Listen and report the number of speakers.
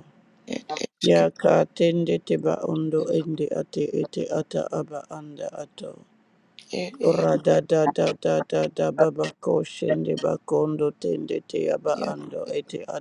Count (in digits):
2